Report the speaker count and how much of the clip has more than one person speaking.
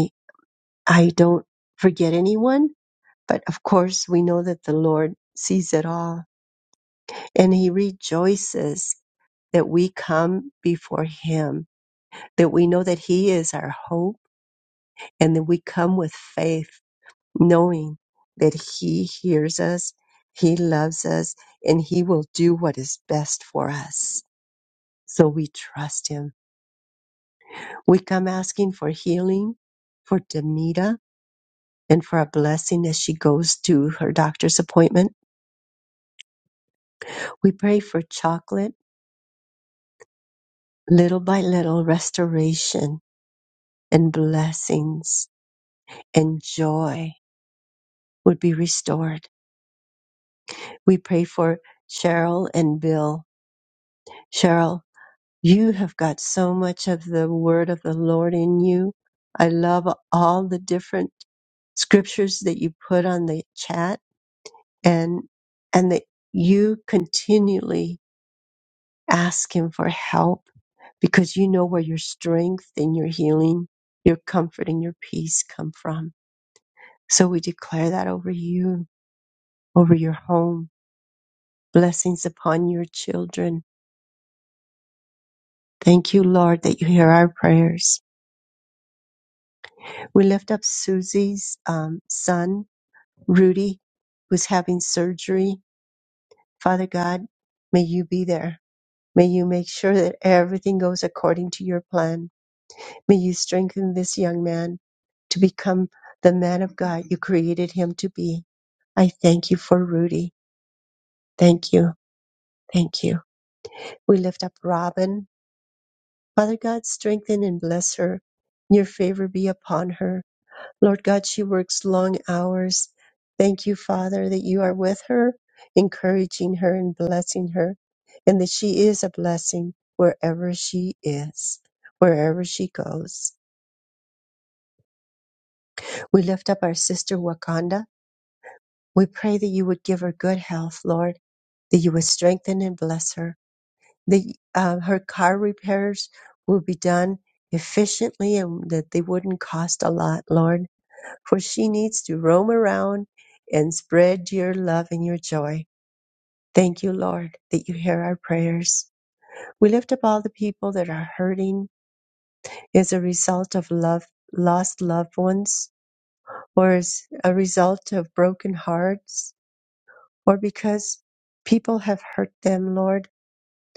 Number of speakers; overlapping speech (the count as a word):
one, no overlap